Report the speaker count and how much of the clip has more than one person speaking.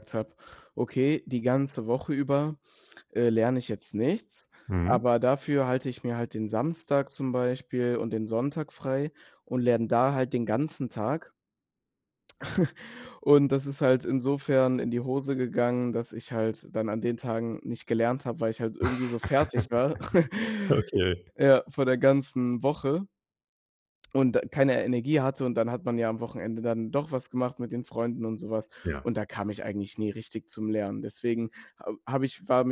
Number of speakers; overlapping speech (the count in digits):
2, under 1%